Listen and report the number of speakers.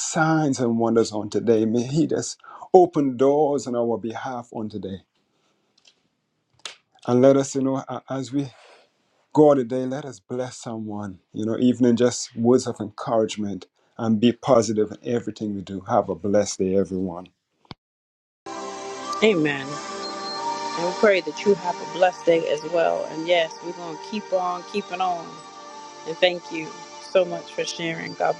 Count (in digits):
2